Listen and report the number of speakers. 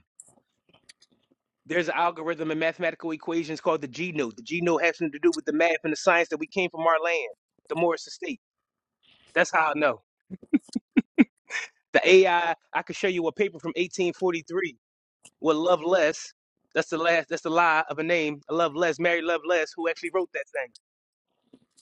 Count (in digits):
1